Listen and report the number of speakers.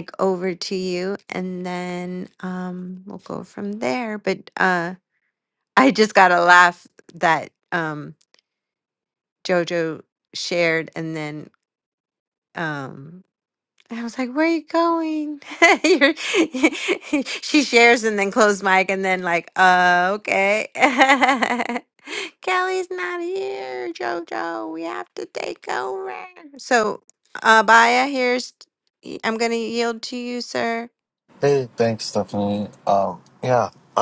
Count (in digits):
2